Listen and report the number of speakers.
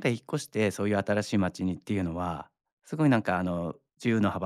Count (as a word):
one